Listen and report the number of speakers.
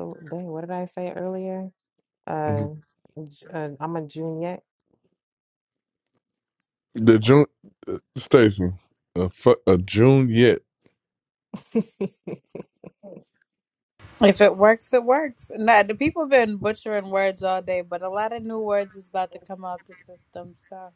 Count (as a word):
three